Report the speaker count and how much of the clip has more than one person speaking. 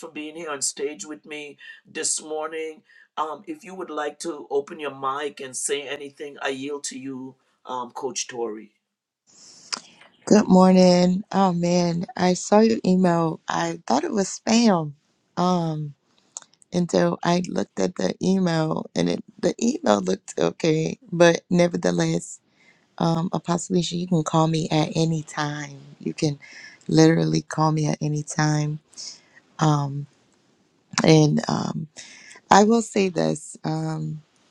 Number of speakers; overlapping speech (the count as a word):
two, no overlap